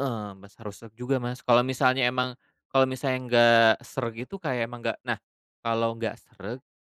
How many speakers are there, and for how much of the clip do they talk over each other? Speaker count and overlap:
1, no overlap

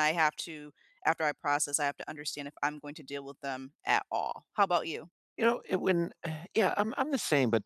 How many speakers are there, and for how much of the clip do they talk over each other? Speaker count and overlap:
2, no overlap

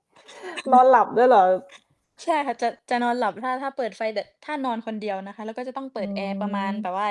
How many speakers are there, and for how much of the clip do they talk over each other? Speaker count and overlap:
2, about 12%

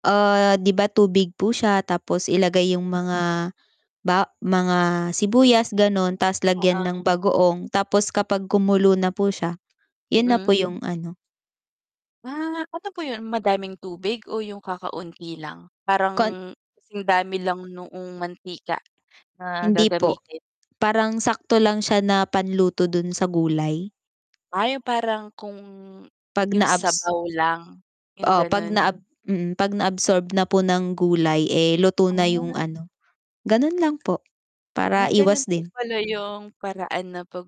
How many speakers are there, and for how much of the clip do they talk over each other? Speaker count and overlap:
2, about 10%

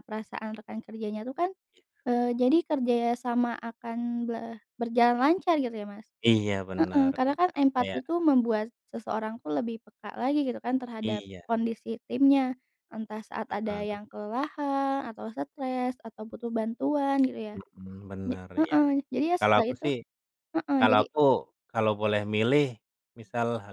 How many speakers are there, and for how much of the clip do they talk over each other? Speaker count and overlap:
2, about 13%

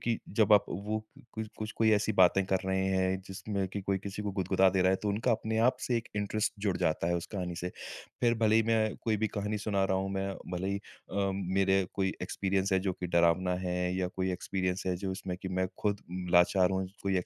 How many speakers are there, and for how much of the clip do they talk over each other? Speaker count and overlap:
1, no overlap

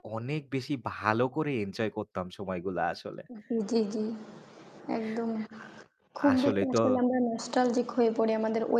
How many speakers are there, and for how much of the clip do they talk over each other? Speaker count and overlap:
2, about 6%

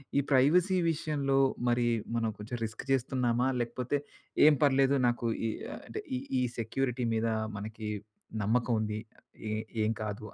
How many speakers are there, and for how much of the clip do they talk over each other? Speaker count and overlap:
1, no overlap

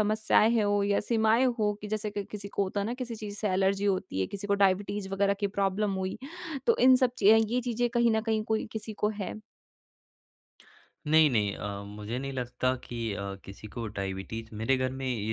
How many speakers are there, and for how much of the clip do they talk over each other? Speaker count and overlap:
2, no overlap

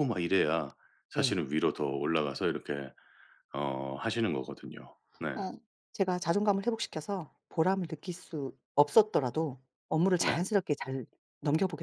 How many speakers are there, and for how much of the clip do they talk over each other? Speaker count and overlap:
2, about 3%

